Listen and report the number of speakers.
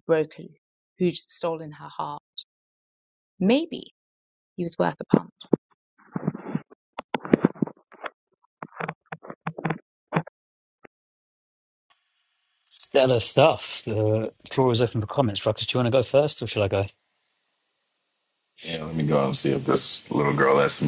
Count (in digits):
3